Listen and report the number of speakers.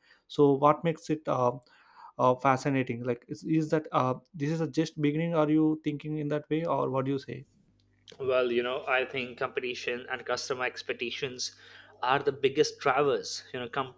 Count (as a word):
two